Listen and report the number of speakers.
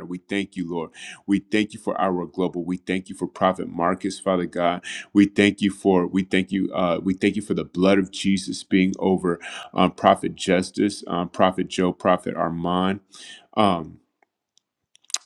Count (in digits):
1